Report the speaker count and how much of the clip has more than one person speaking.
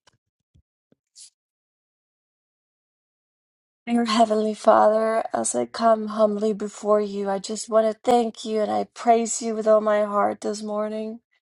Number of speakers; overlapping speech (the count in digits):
1, no overlap